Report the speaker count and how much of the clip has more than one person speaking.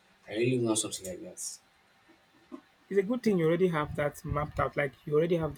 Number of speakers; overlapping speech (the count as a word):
two, no overlap